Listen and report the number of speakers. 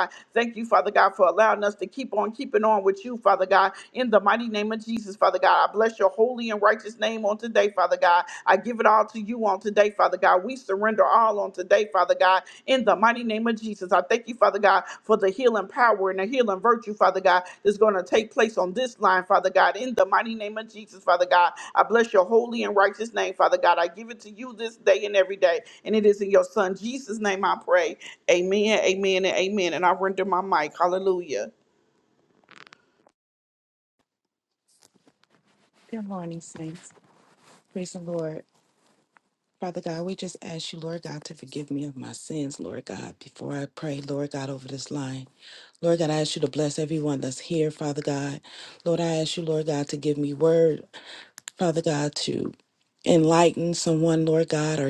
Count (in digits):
2